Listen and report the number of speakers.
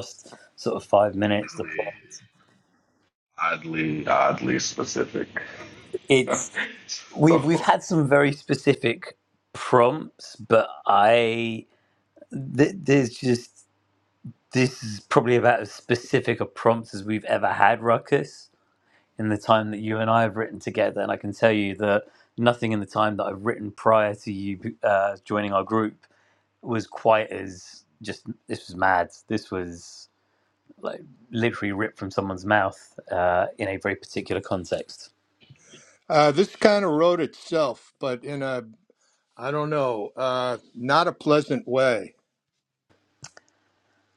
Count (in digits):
3